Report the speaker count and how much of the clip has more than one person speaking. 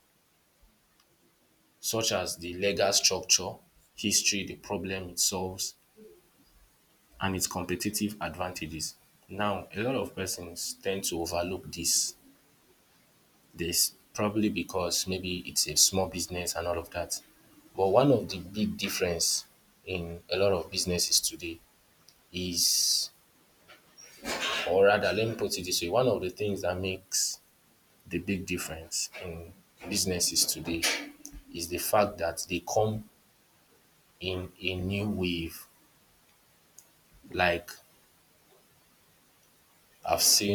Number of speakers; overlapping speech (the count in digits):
1, no overlap